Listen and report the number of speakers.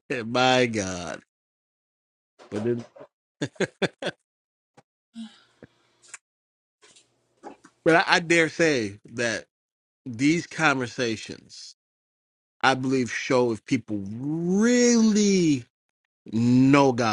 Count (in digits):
1